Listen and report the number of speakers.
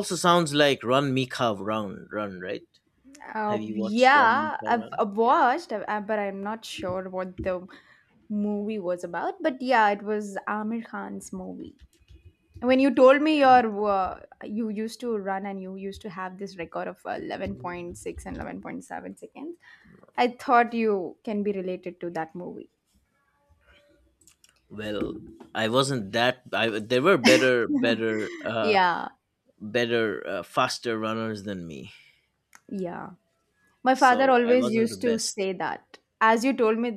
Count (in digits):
2